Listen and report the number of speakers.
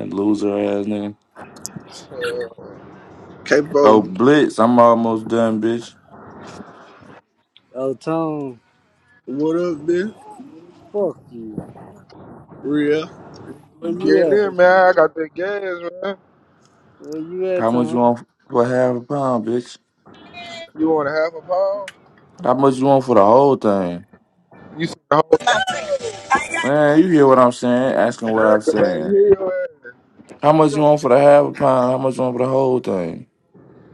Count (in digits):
4